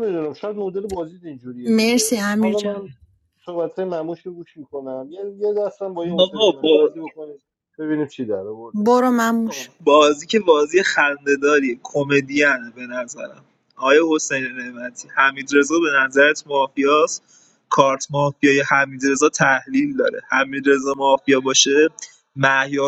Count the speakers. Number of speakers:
three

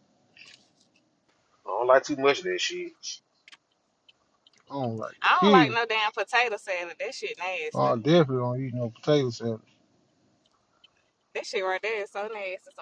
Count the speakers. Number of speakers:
three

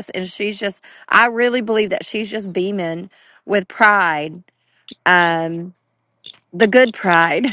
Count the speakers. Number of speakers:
one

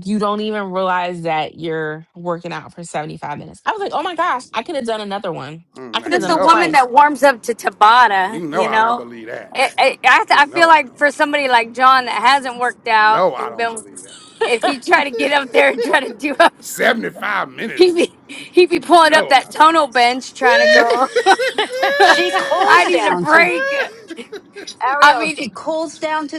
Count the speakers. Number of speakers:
four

